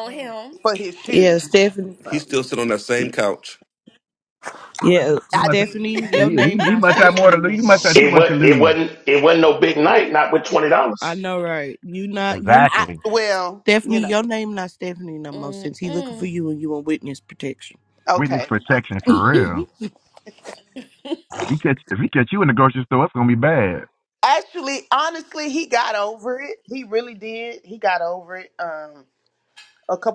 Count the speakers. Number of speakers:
six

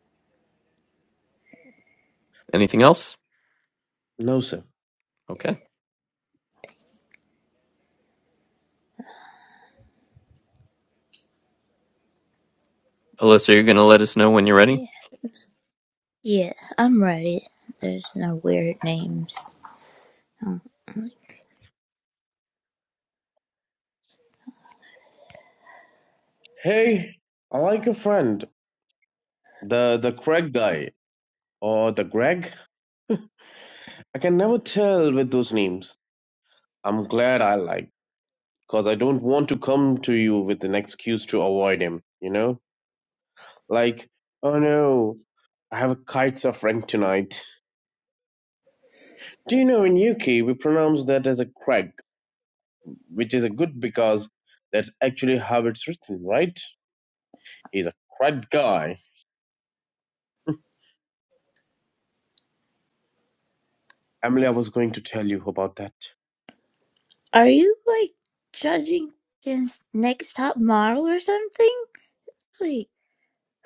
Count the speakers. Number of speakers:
three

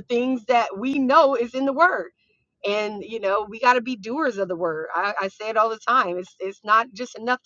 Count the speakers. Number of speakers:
one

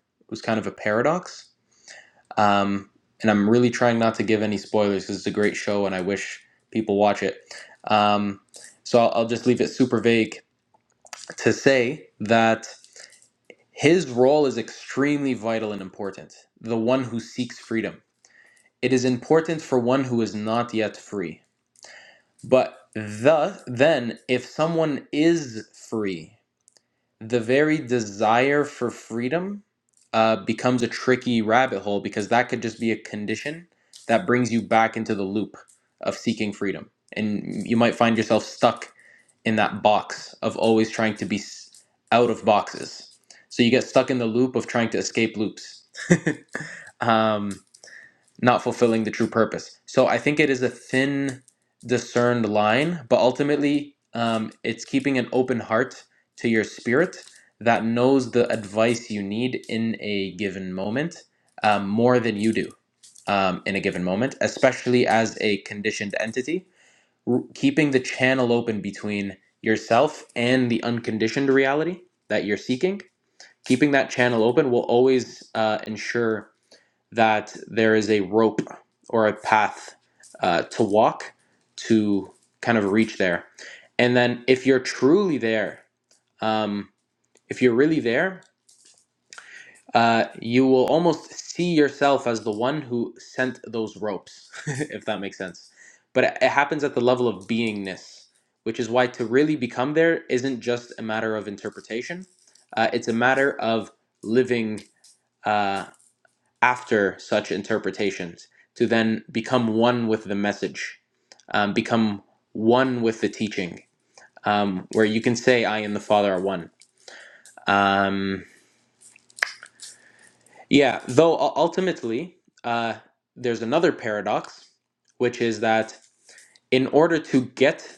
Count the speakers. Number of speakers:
one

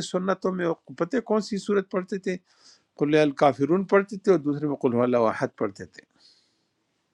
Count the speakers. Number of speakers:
one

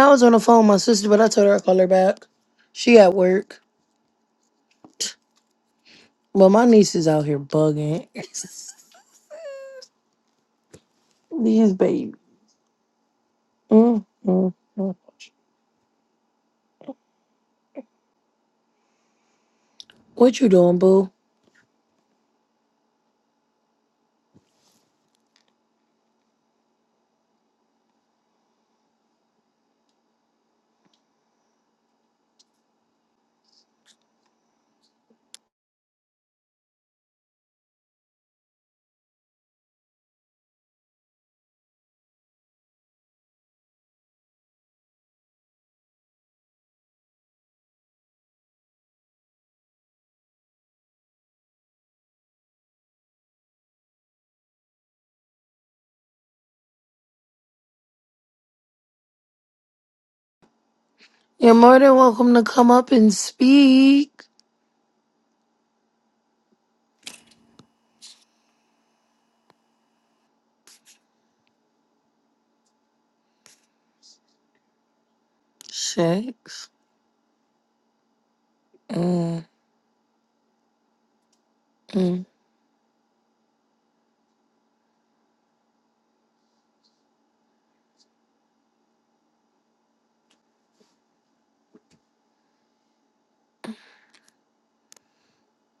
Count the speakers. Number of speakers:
one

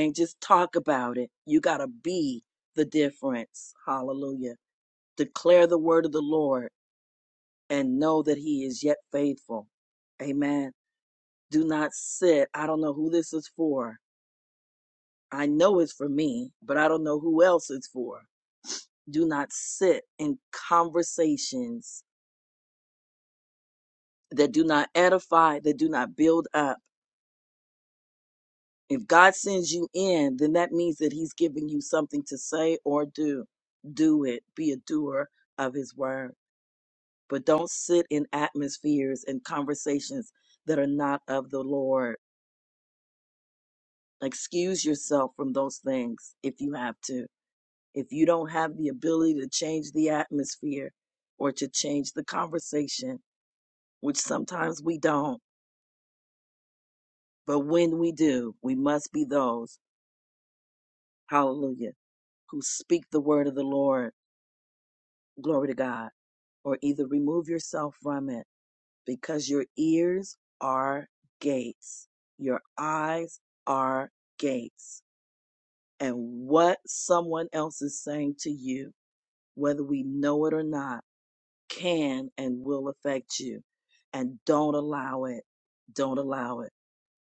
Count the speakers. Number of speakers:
one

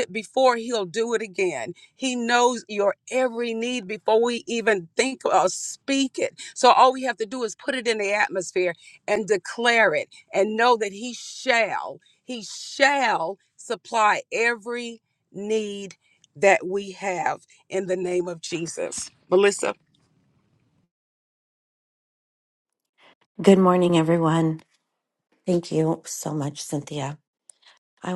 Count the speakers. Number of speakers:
two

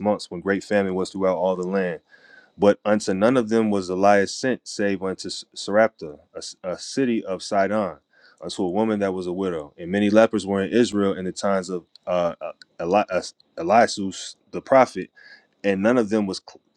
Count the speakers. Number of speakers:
one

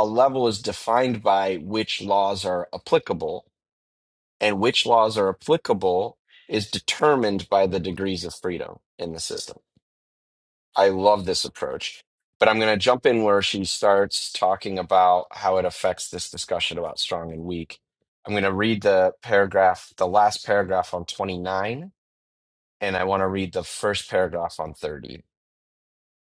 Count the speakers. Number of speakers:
one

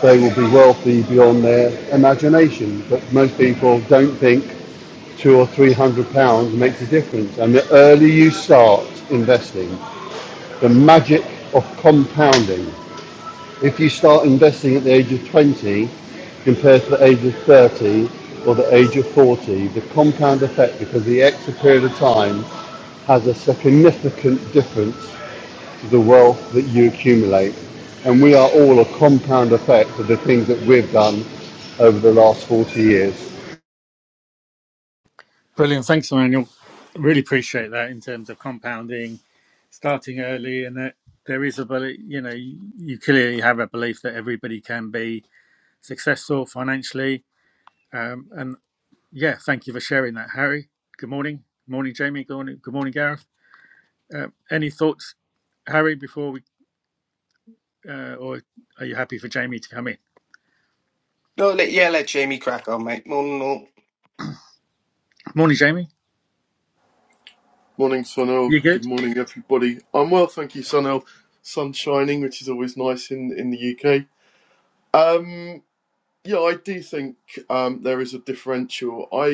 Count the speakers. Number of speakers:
four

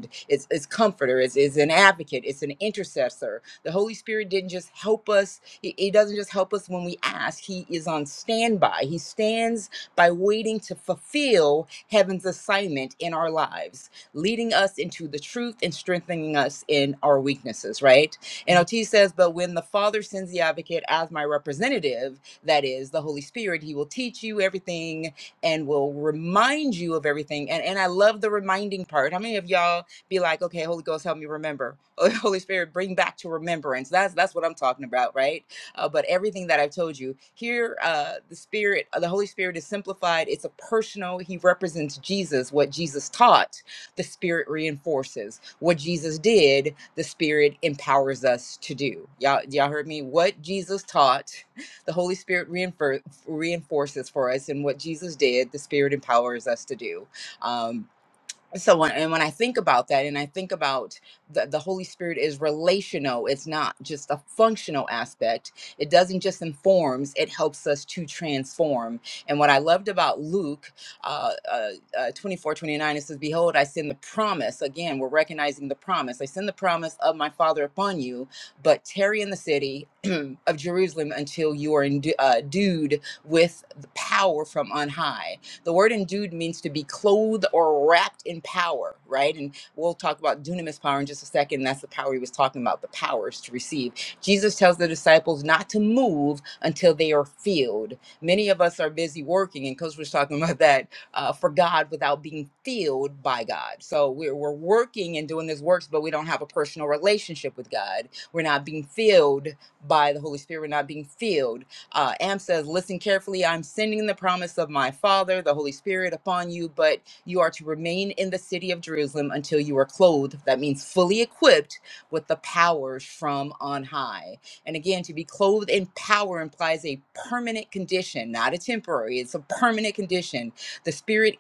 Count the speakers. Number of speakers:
one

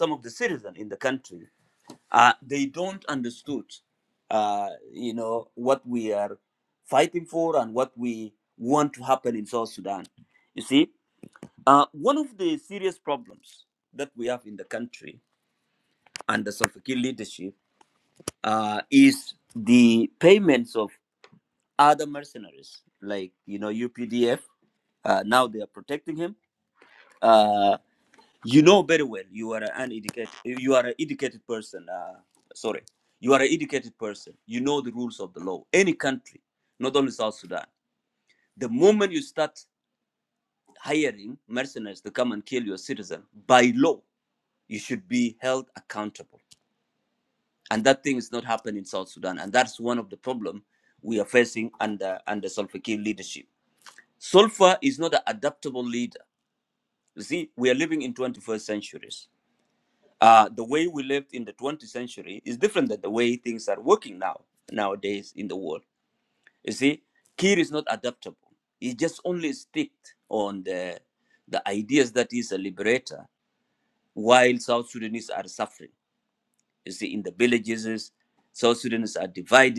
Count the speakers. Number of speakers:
one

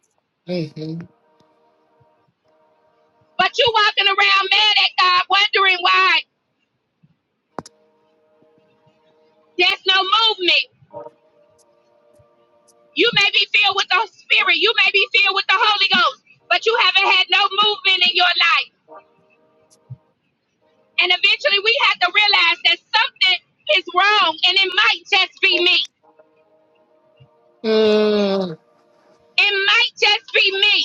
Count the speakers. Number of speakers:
two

